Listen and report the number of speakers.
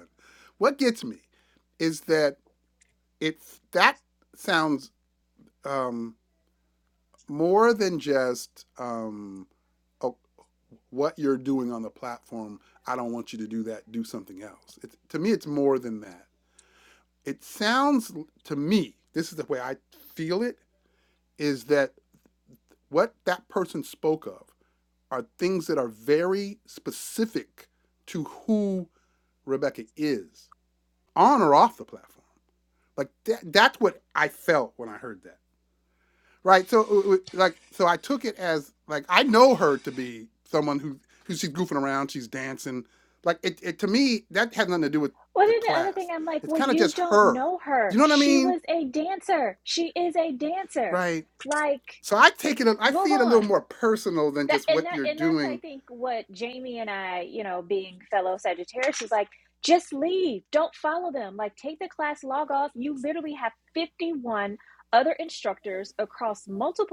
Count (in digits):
2